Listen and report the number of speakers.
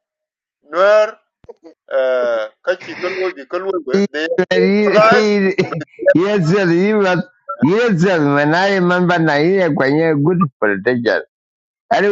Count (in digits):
2